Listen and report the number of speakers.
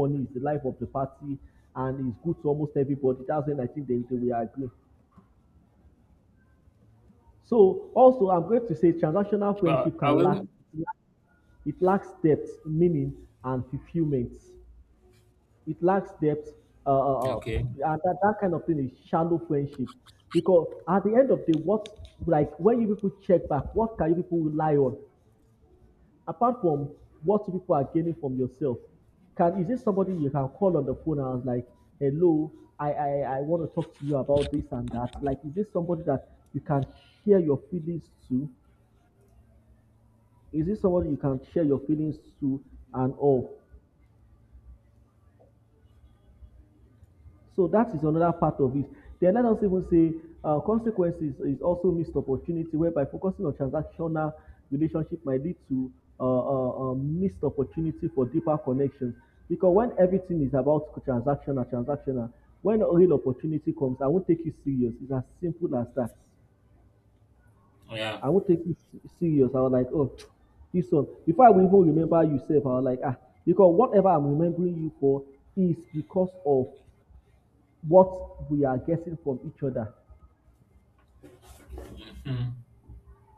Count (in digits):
2